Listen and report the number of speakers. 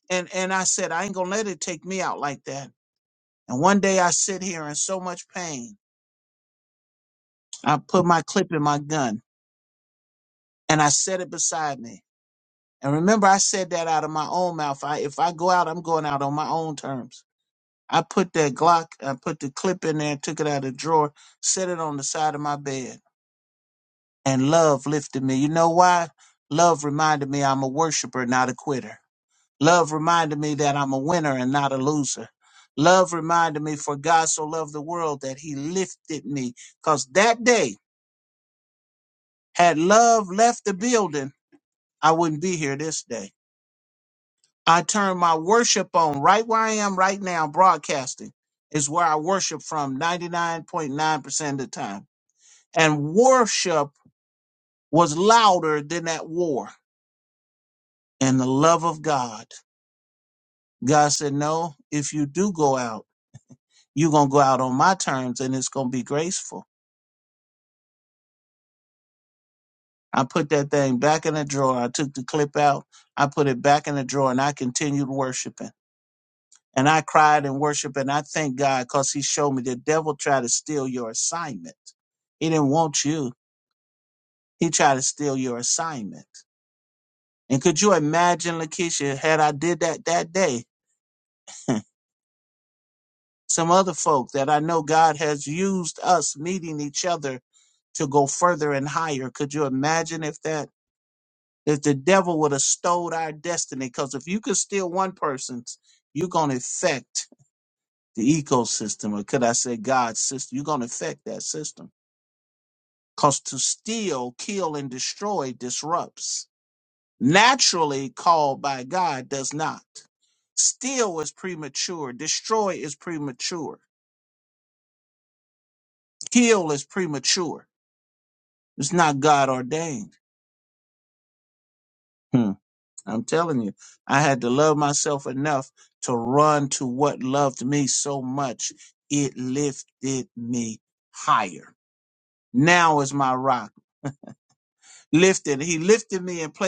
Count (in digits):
1